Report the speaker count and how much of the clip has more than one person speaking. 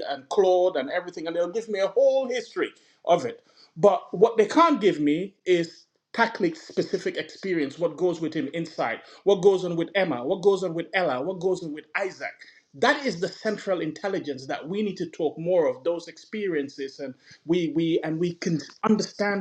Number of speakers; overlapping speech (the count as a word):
one, no overlap